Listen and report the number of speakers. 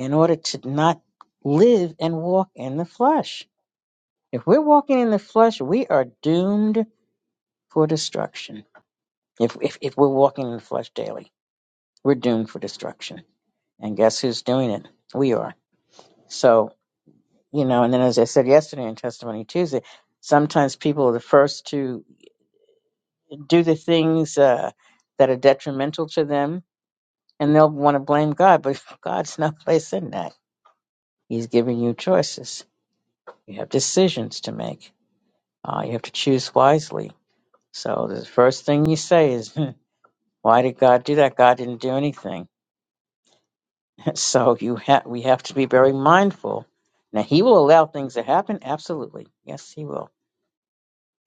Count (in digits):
1